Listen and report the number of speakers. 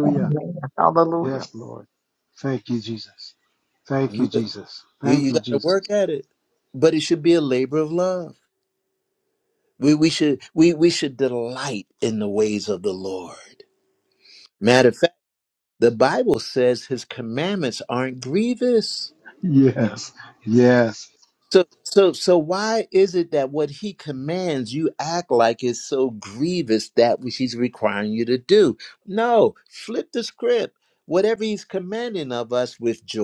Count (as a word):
three